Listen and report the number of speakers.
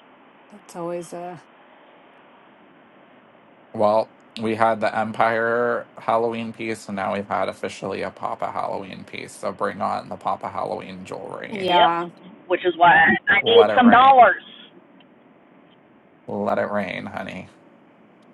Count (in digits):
3